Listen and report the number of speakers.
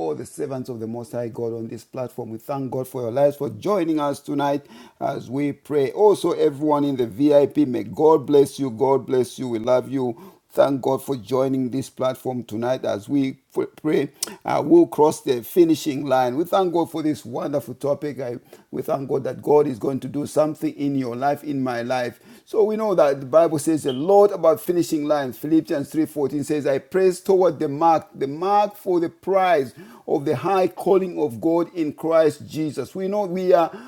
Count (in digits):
1